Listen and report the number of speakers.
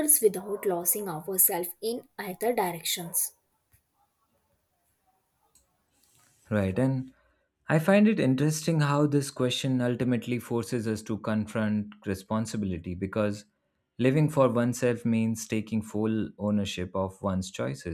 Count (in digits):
2